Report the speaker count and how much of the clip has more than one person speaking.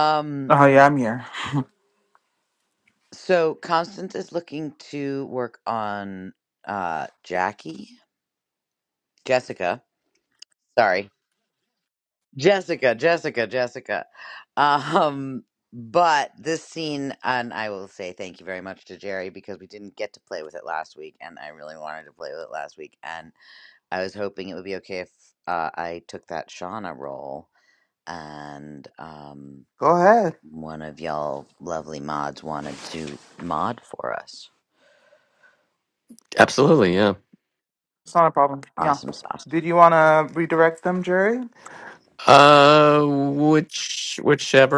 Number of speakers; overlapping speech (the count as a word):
three, about 1%